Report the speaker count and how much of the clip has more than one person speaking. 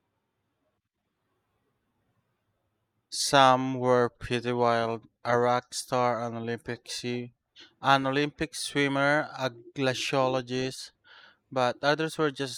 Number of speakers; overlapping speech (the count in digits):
1, no overlap